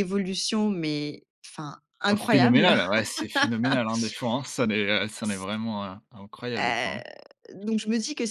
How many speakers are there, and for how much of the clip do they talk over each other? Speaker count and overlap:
2, about 14%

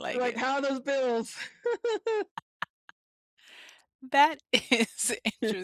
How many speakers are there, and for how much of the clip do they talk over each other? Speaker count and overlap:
2, about 4%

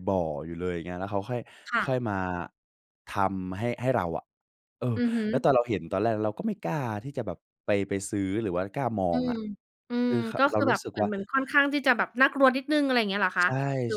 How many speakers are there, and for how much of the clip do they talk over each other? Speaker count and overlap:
2, about 13%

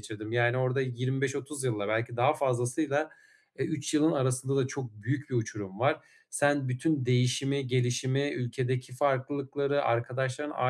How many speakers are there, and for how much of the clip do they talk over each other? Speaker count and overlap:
1, no overlap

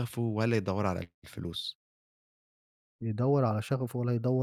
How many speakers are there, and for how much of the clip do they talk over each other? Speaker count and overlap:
2, no overlap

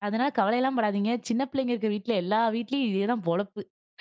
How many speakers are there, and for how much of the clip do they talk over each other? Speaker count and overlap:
1, no overlap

